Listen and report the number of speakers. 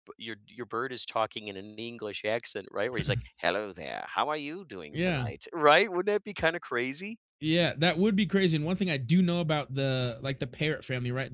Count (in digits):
2